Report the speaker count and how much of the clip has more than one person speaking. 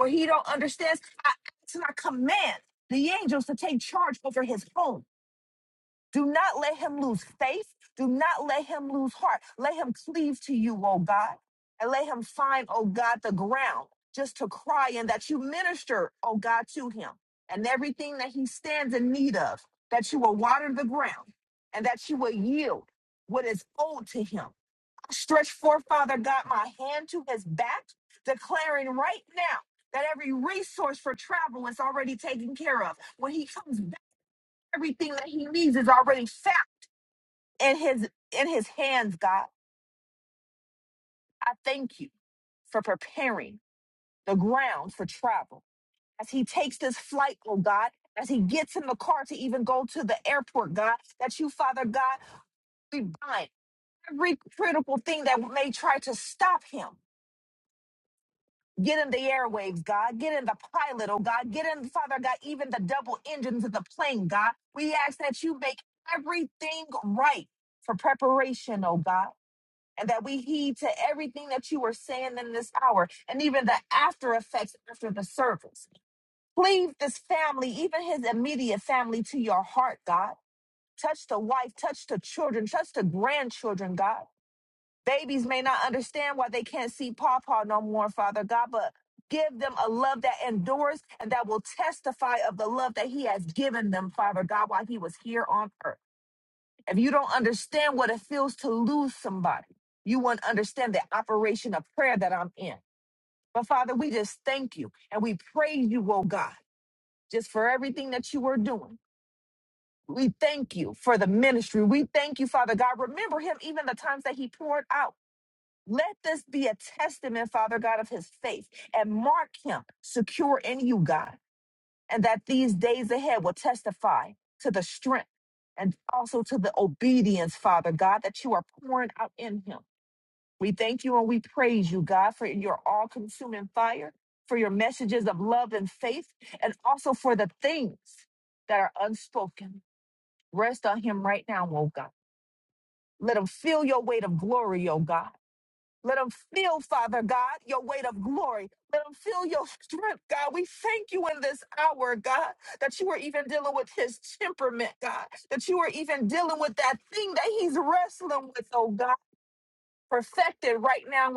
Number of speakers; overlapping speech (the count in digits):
1, no overlap